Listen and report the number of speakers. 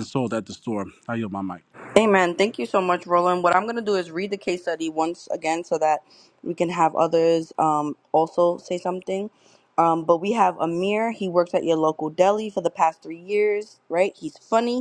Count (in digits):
2